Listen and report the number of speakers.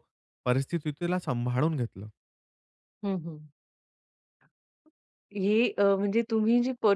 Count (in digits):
2